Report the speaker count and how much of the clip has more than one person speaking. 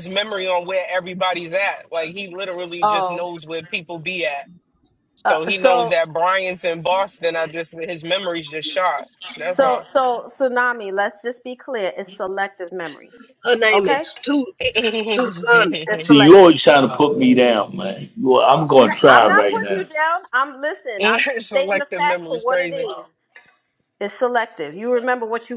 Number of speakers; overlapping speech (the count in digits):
4, about 18%